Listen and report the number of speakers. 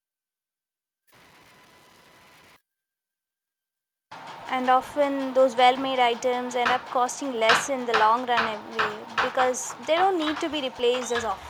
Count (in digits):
1